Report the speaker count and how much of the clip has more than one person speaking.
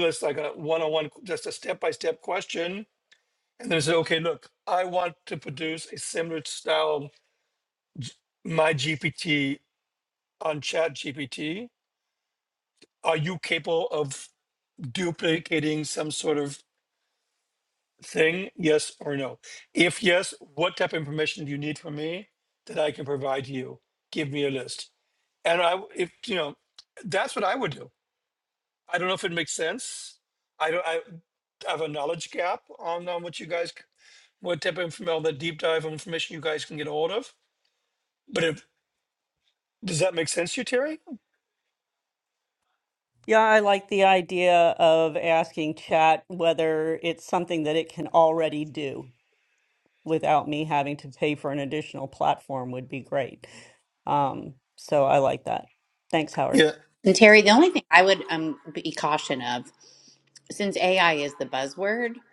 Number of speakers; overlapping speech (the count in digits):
3, under 1%